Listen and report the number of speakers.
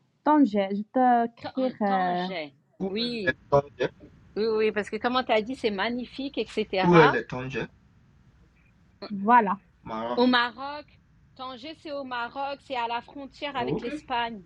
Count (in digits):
3